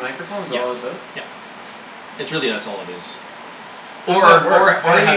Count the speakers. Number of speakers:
2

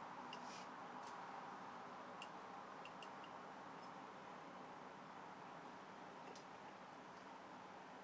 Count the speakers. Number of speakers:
0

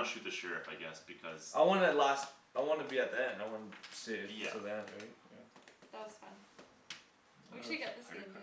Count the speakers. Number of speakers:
3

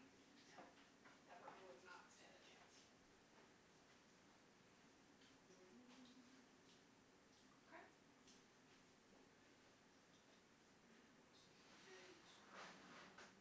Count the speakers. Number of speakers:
2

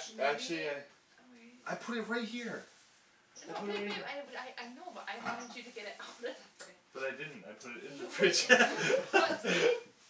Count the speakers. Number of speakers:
2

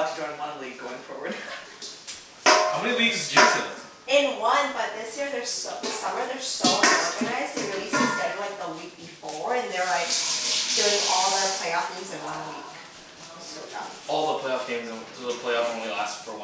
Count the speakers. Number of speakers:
4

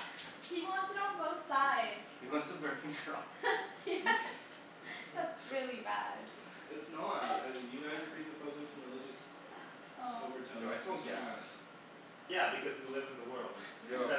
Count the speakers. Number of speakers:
4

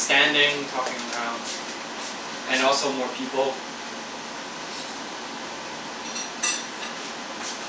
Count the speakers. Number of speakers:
1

